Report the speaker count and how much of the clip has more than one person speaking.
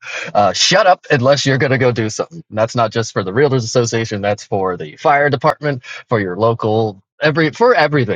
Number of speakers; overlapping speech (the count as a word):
one, no overlap